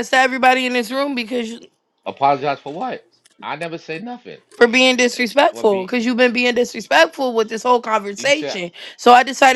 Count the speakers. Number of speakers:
two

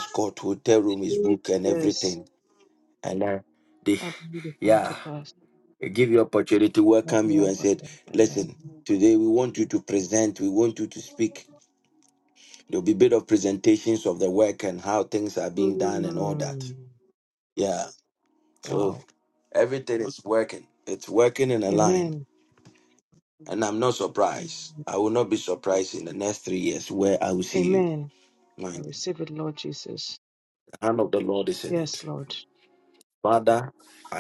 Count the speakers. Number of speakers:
two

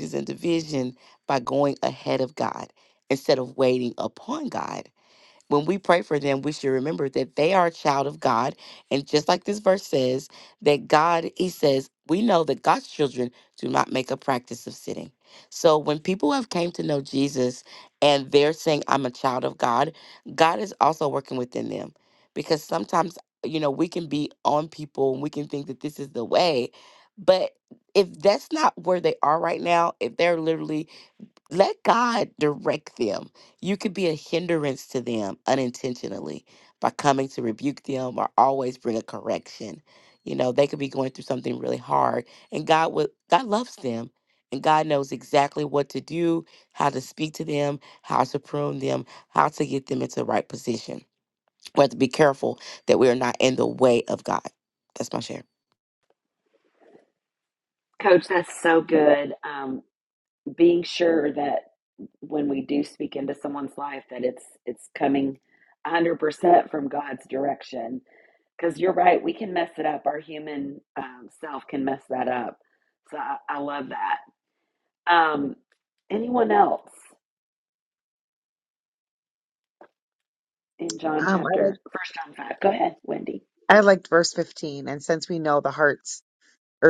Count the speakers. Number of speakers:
three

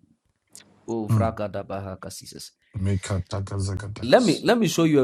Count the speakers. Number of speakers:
two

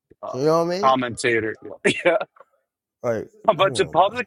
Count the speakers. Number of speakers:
two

